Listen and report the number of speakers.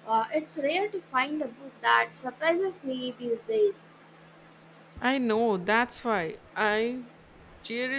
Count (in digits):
2